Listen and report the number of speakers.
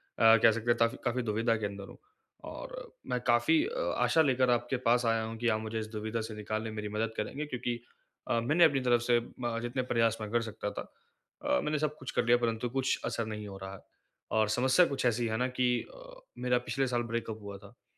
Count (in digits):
1